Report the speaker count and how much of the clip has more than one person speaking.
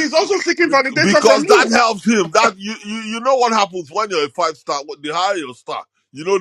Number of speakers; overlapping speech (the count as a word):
two, about 16%